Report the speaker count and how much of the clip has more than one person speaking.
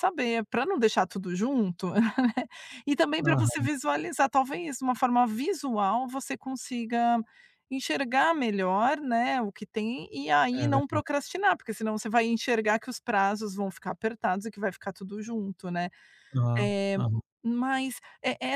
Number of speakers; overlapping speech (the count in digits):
2, about 8%